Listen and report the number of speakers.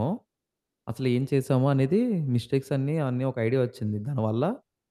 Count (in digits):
1